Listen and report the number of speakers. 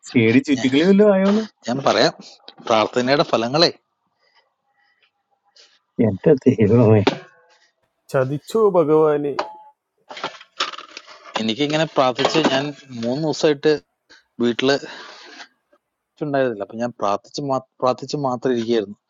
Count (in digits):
3